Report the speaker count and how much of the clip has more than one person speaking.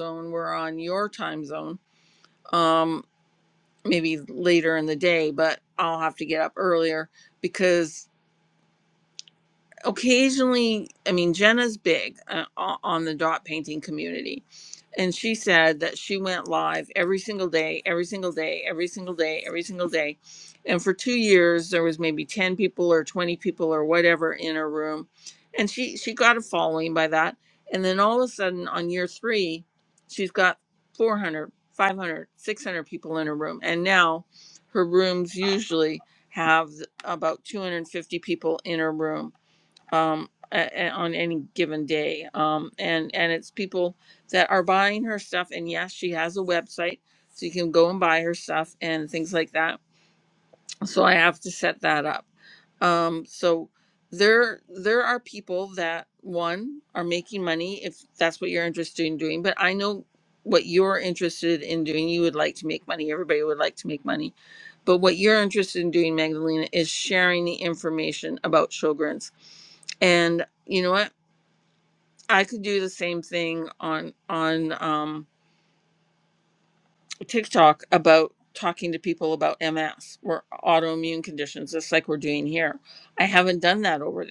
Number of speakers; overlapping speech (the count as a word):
one, no overlap